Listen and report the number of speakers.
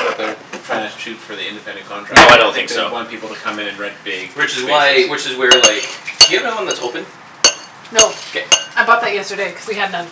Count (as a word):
three